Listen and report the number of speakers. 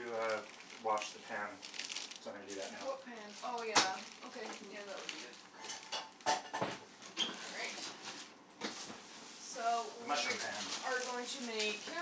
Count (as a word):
two